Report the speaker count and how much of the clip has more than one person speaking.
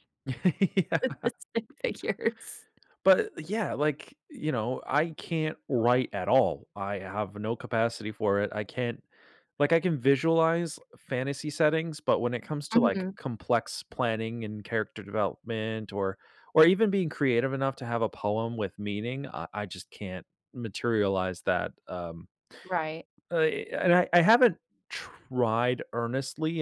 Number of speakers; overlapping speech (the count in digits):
2, about 3%